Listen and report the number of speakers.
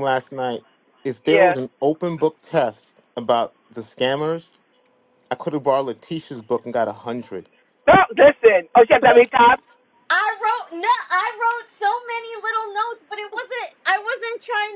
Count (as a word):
three